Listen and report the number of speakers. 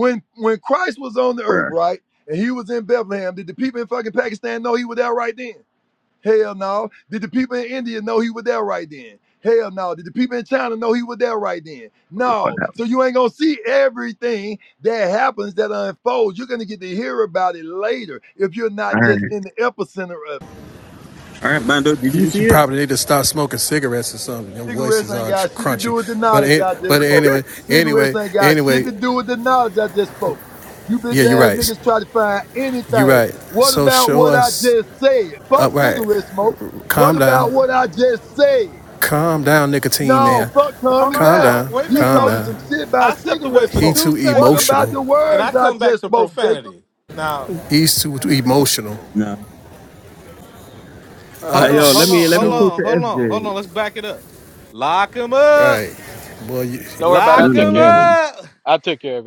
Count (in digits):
5